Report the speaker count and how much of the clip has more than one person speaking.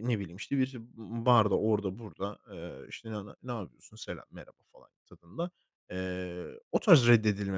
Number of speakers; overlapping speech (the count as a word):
one, no overlap